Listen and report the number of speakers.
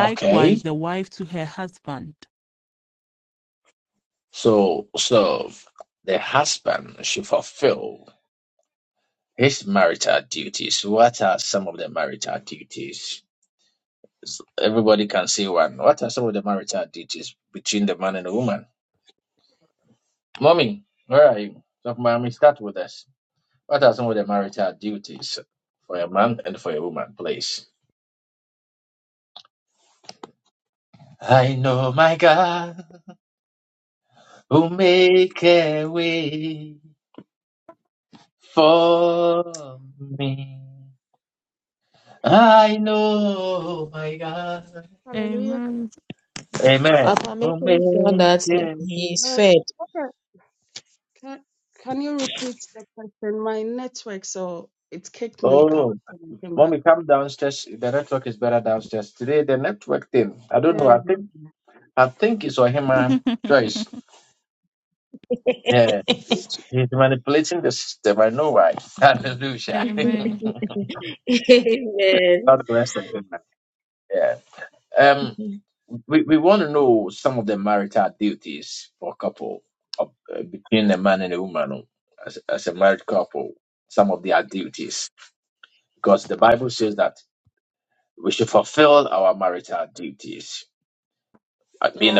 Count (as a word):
four